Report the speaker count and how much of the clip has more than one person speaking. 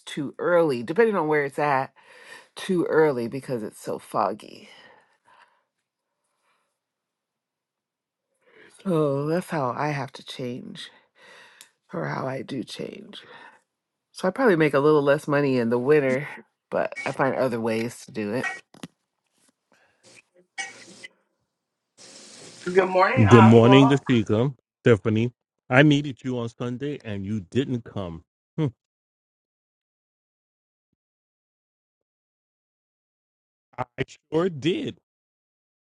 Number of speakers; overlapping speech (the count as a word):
three, about 2%